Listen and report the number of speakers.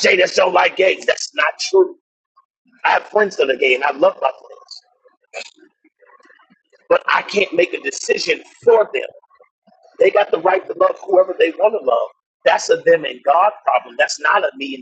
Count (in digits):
1